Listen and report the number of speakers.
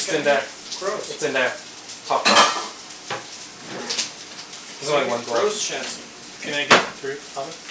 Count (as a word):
two